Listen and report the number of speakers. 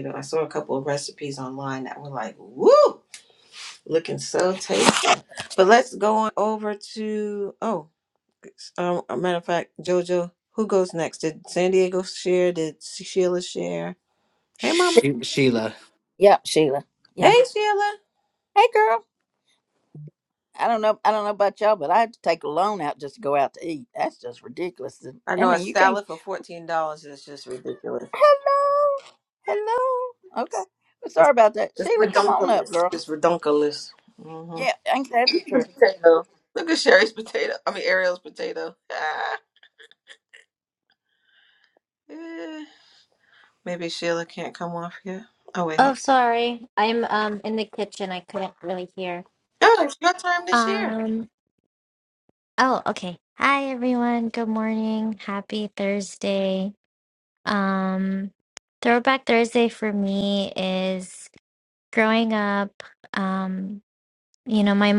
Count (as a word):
four